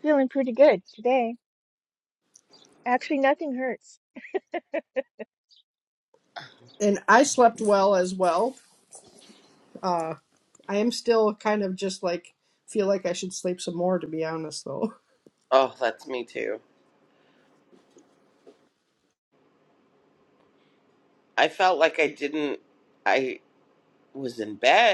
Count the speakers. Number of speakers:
3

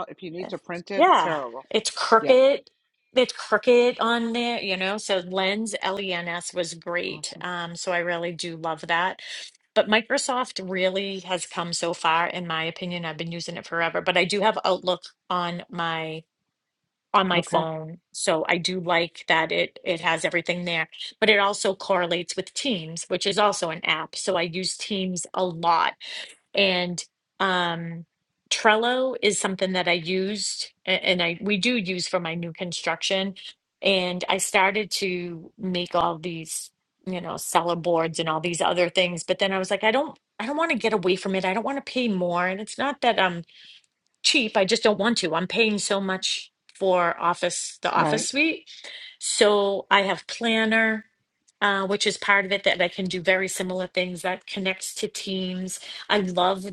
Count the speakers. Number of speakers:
2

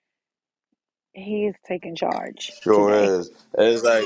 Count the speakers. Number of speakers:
2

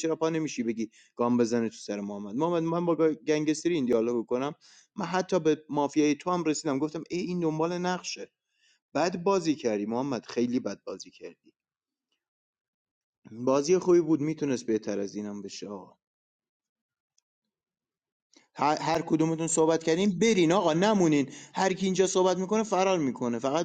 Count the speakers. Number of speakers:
1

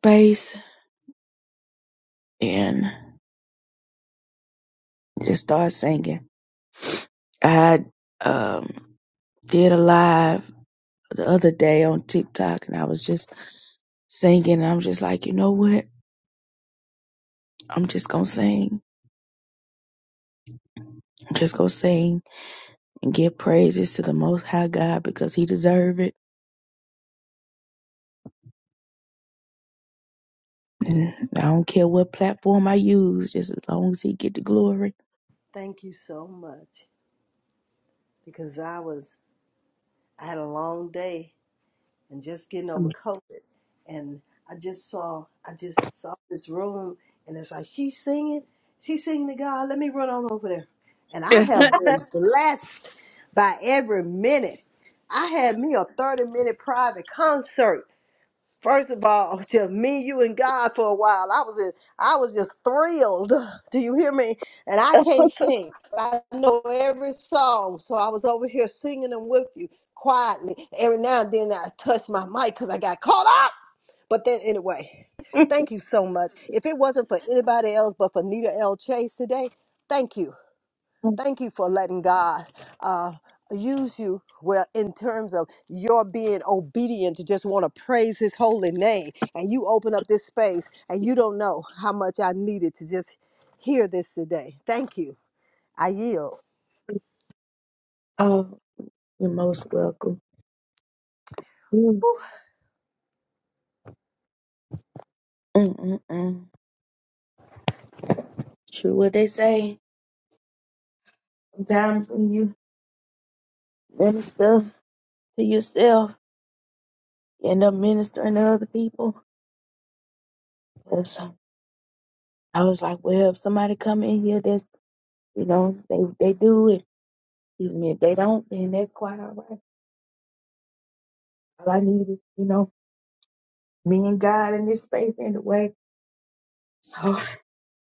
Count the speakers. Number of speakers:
2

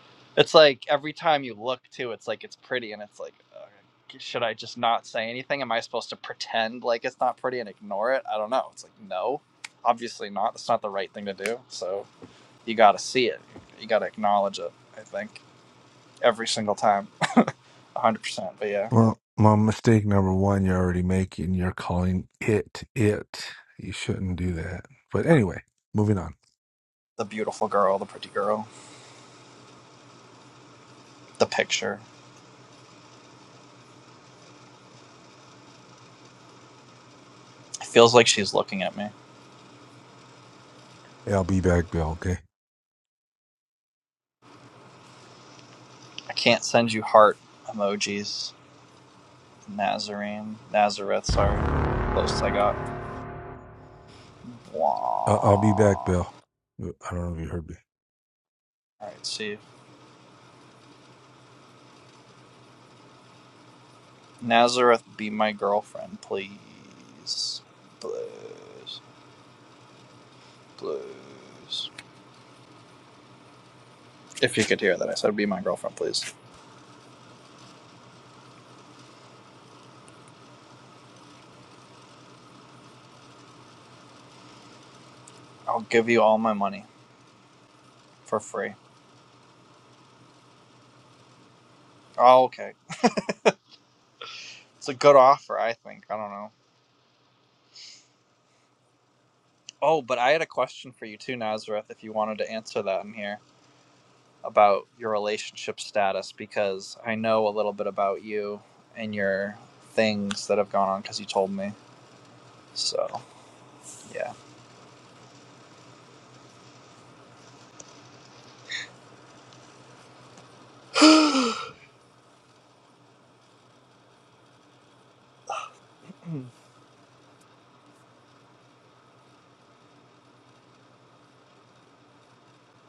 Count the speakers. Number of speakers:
2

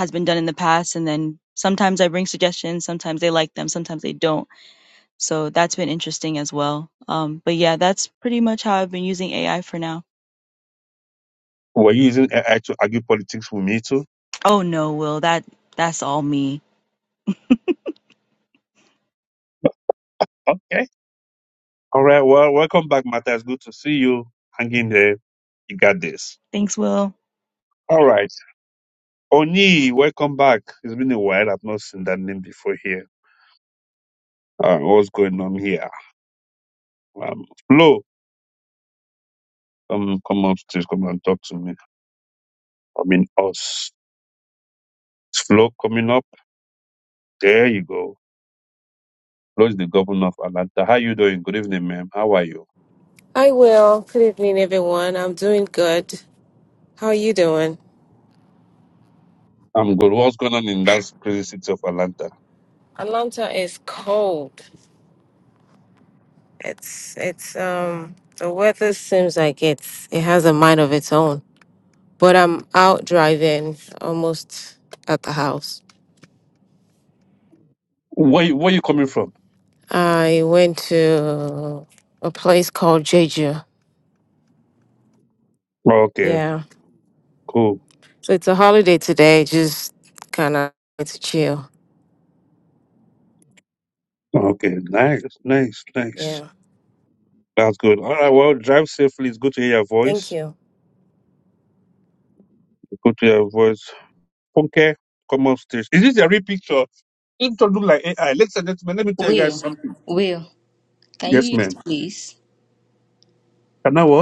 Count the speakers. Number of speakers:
4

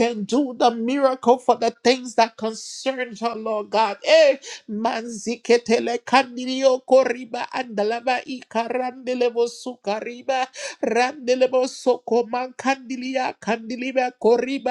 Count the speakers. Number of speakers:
1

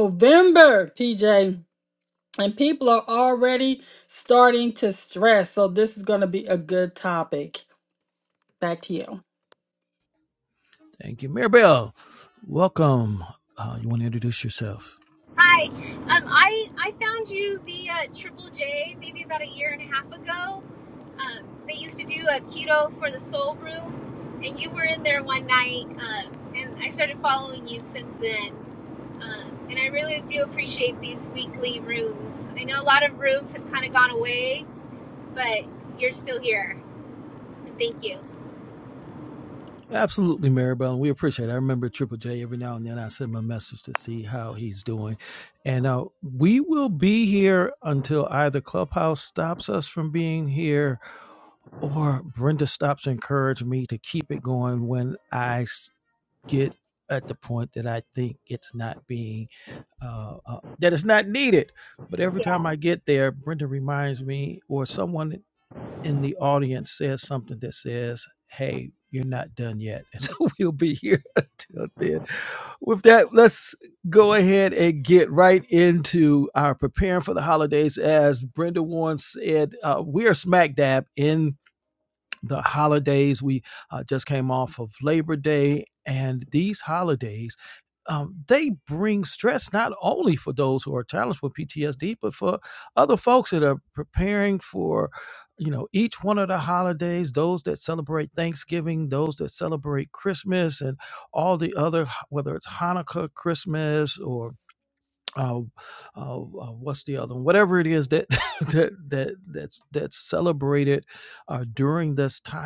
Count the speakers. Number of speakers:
3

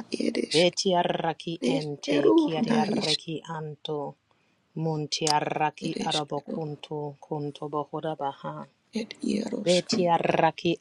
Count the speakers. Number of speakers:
2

